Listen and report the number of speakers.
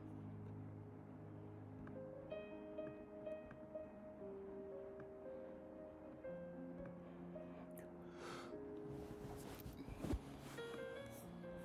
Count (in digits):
0